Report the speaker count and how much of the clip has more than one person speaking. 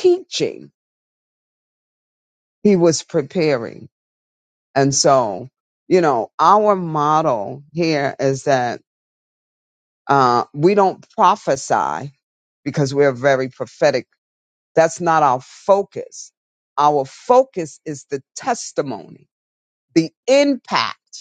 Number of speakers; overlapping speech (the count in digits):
1, no overlap